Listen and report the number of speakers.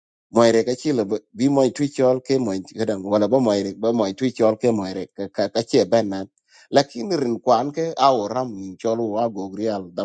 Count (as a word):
one